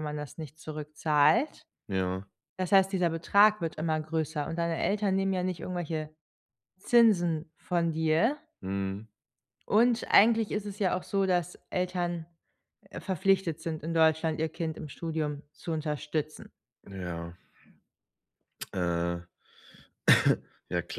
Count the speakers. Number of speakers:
two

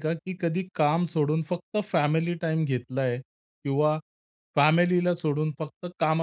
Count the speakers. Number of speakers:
one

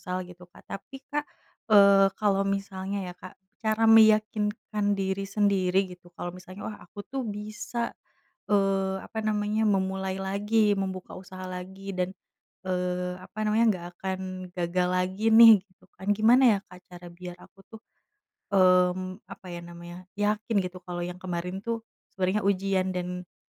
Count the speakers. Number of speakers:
one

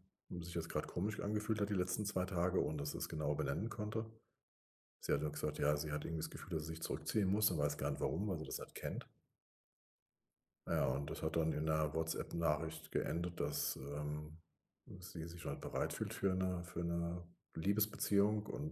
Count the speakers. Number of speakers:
one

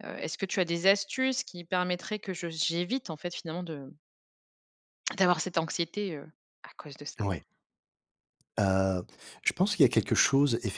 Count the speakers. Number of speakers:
two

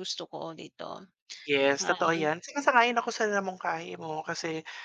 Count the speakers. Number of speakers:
two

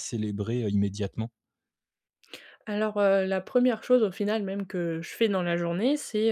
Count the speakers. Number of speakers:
two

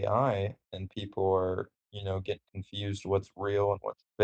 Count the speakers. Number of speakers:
one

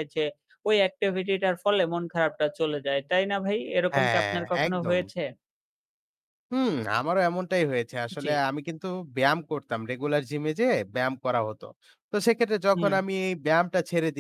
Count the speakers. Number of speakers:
two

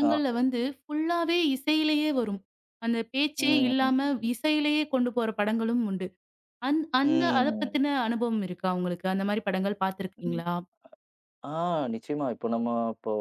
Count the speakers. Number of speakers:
two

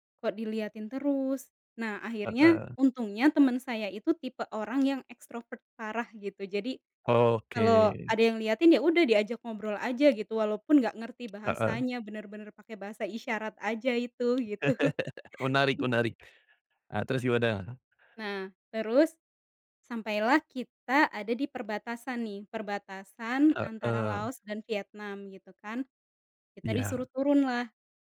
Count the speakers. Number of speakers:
two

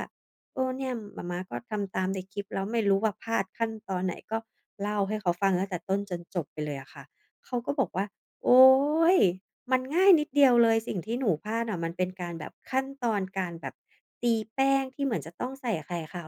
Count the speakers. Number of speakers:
one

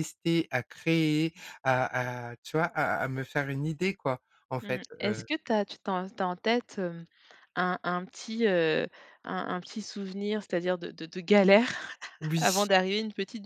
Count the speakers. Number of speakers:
two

